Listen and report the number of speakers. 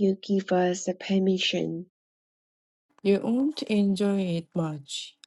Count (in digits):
2